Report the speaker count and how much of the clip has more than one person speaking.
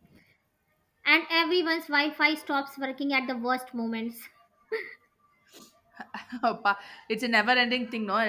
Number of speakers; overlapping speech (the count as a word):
two, no overlap